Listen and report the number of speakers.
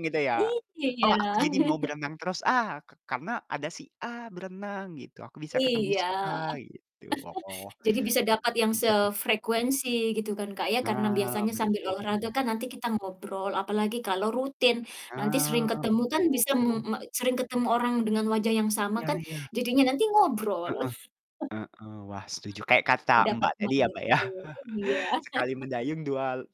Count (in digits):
2